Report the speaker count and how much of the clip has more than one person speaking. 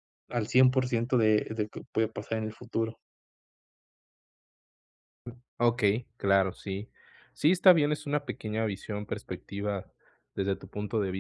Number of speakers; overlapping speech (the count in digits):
2, no overlap